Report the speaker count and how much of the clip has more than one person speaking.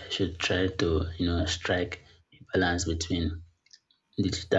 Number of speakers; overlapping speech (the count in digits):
1, no overlap